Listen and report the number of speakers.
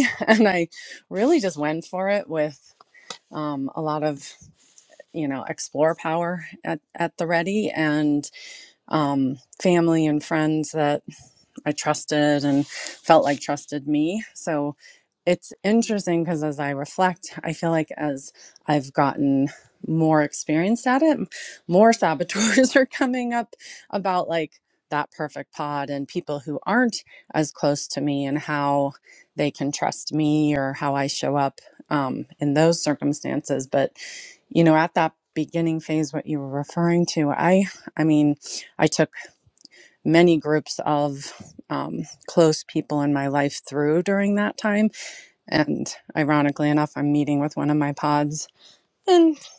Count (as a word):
one